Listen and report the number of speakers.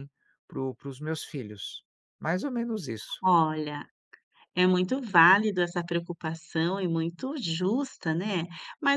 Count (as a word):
two